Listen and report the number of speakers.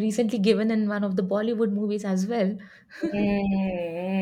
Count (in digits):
2